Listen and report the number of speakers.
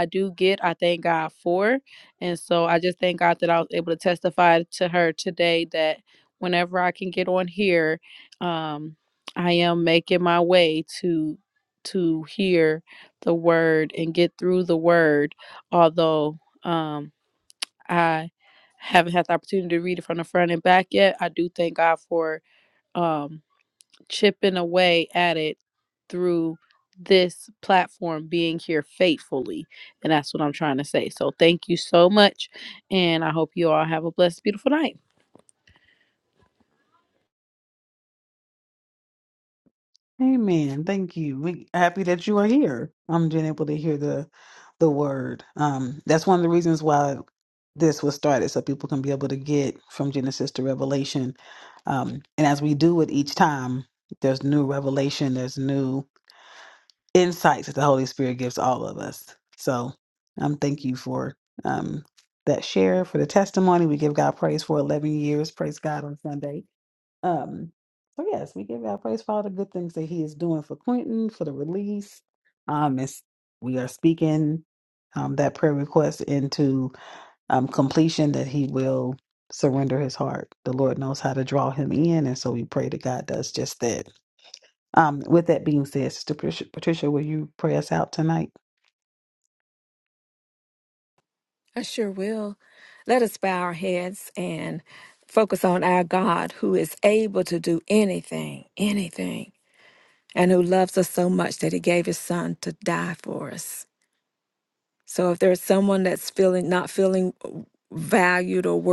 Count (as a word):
three